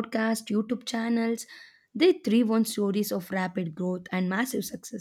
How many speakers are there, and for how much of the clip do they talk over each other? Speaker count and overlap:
1, no overlap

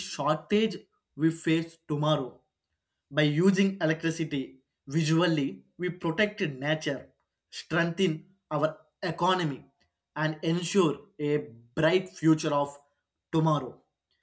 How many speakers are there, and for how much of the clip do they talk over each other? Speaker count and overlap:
1, no overlap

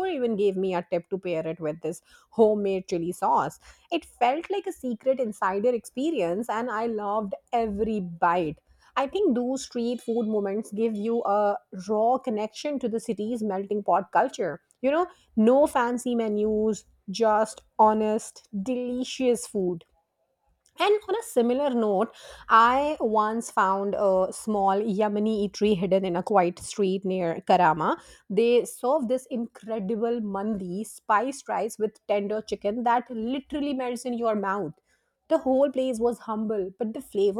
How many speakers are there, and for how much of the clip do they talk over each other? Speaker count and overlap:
1, no overlap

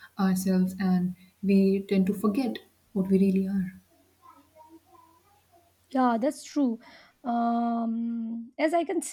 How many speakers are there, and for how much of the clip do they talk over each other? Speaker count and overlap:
2, no overlap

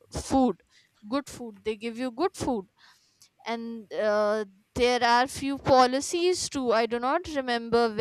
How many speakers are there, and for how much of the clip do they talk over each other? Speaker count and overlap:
1, no overlap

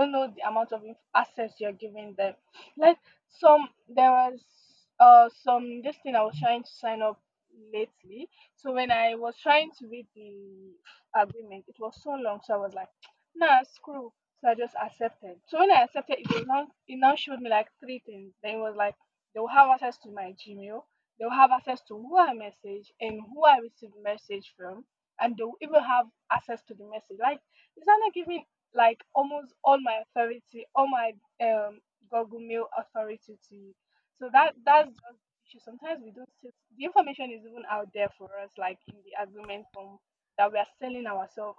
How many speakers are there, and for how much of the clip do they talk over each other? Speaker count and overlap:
1, no overlap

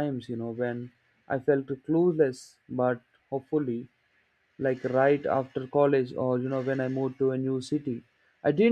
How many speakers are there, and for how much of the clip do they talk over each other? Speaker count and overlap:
1, no overlap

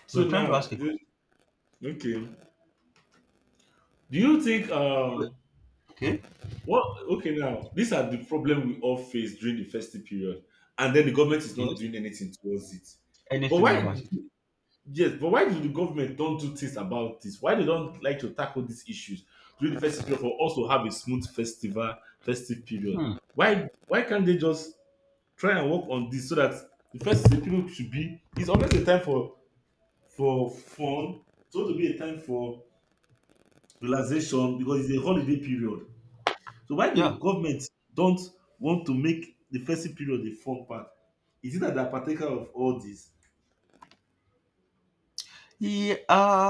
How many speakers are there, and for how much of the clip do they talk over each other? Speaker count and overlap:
2, about 4%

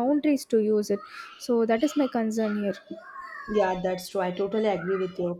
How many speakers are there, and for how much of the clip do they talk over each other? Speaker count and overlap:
2, no overlap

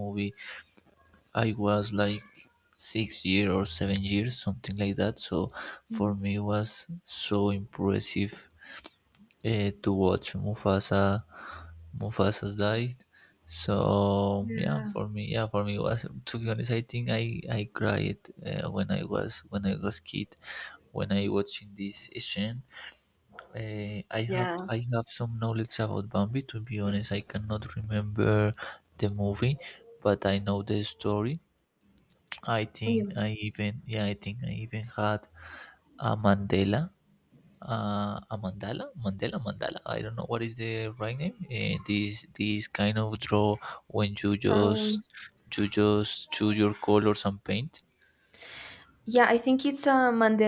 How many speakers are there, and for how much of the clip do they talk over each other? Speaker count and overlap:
2, about 3%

